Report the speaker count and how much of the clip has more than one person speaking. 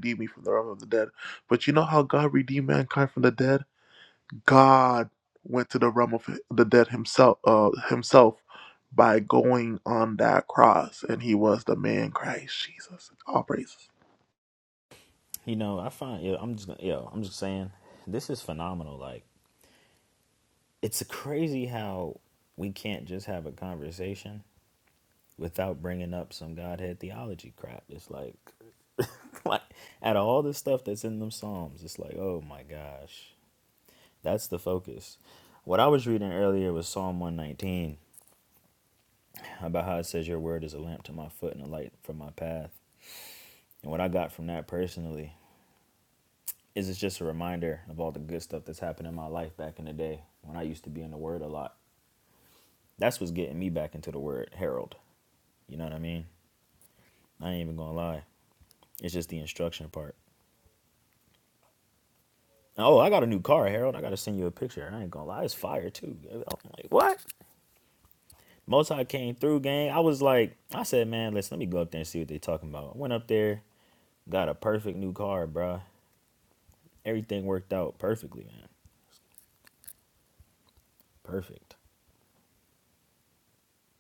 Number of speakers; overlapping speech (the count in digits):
2, no overlap